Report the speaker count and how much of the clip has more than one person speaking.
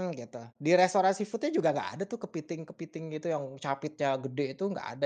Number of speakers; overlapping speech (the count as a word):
one, no overlap